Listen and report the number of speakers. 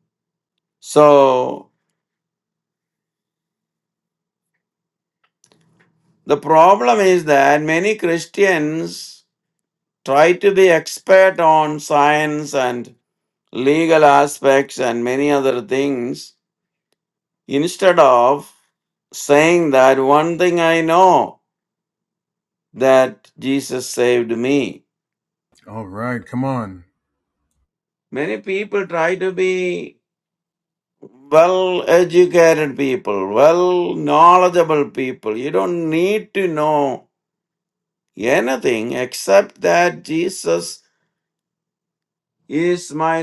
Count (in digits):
2